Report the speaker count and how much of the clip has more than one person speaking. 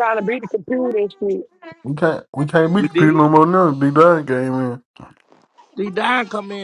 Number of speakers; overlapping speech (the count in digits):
3, about 8%